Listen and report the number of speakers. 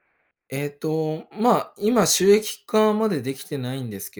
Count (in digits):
1